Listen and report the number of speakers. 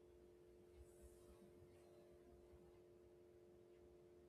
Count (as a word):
zero